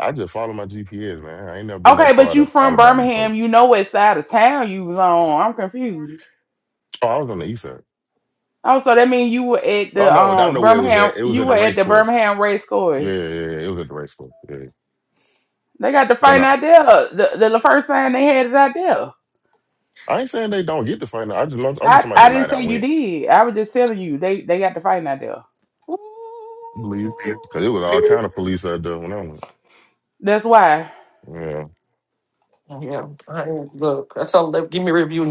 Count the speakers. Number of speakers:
three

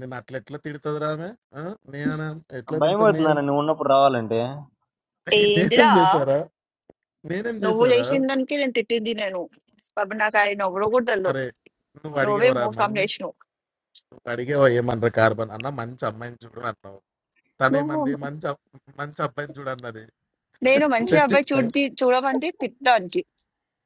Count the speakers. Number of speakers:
three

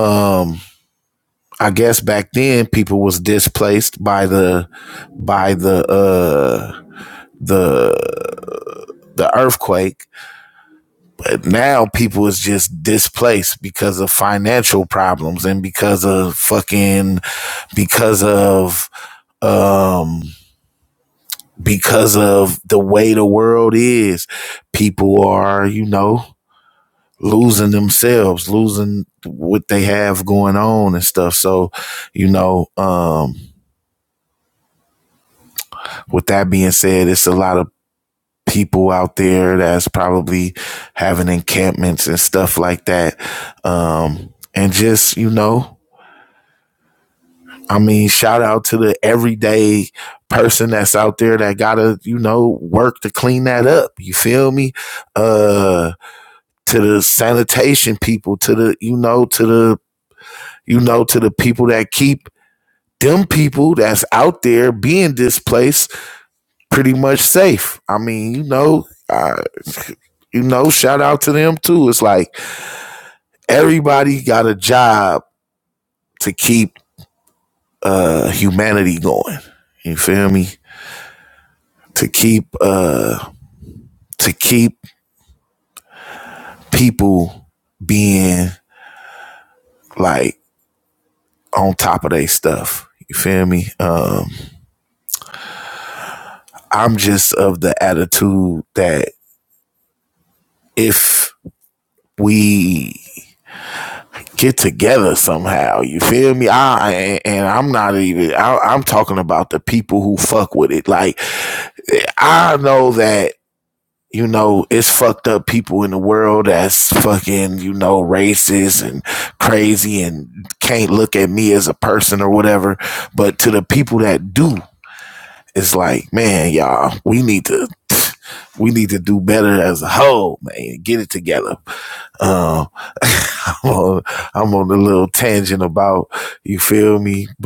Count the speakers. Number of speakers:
one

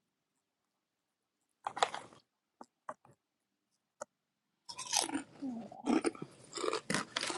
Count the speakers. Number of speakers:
zero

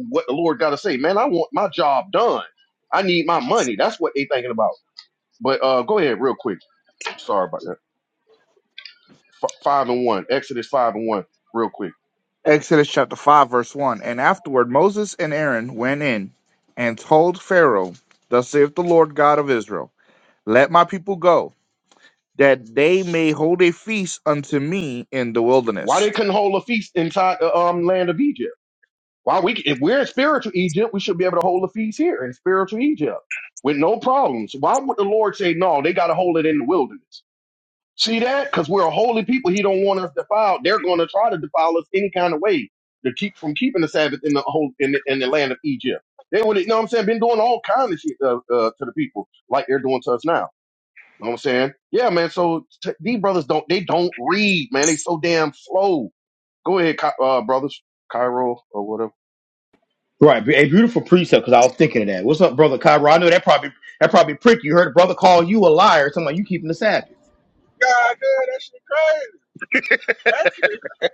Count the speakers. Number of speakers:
four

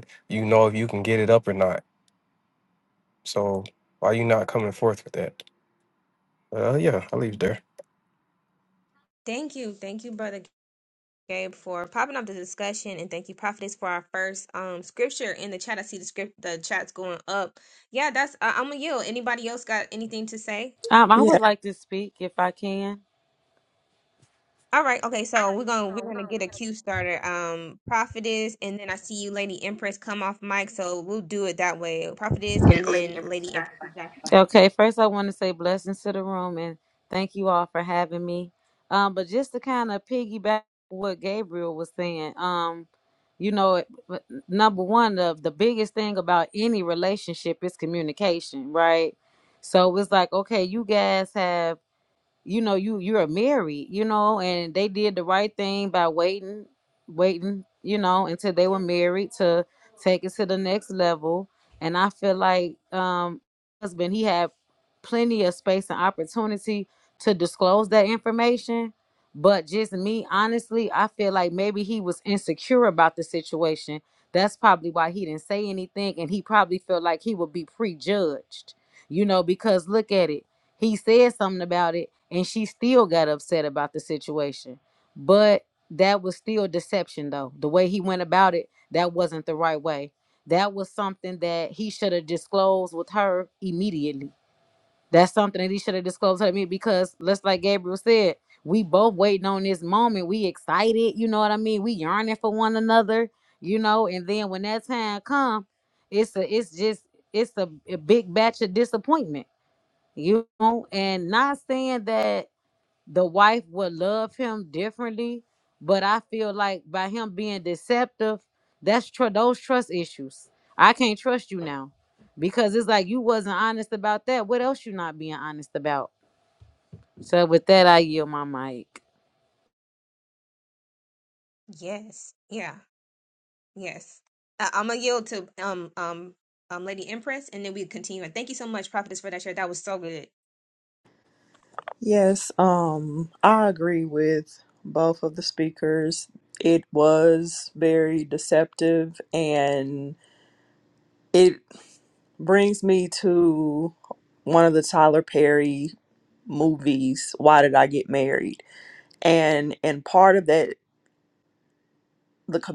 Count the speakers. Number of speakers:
four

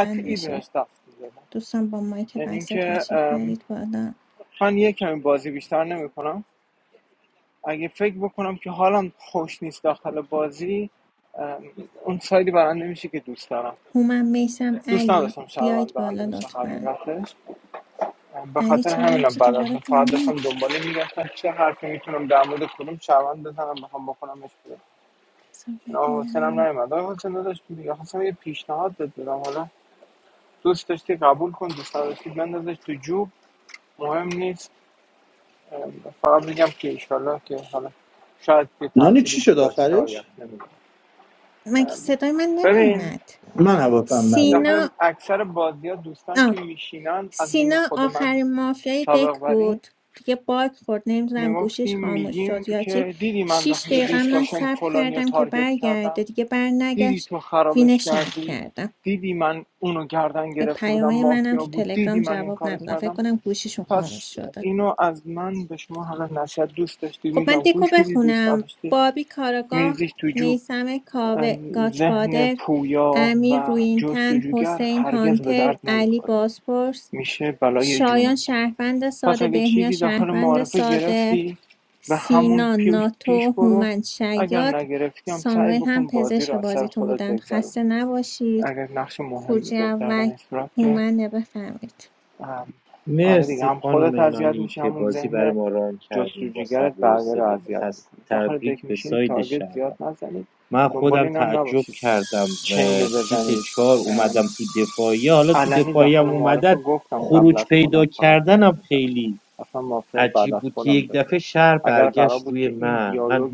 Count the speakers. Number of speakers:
four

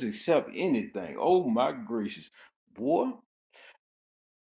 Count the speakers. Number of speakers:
one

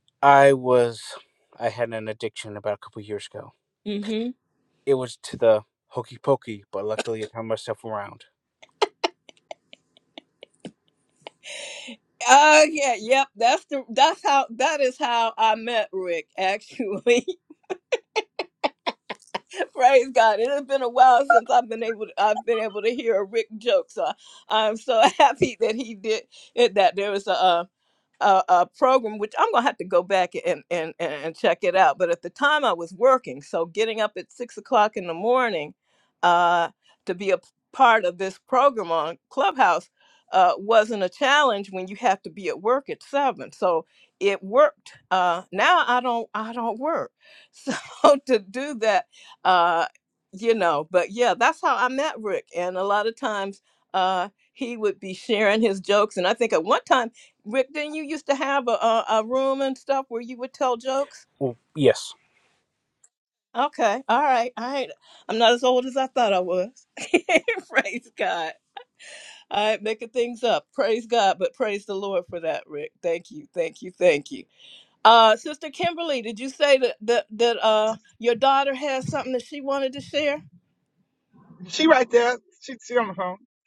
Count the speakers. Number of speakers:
three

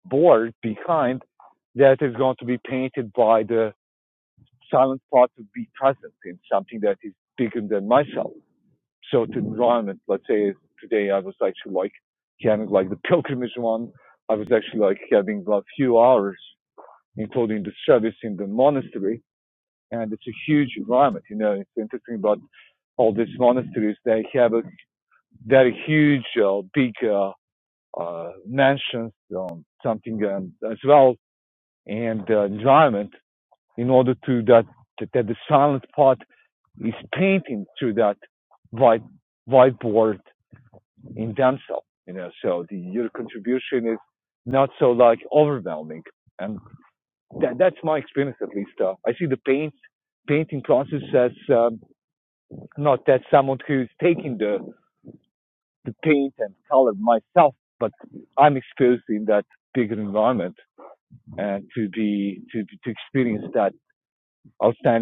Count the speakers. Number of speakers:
one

